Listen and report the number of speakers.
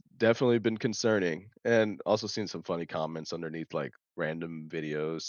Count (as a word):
one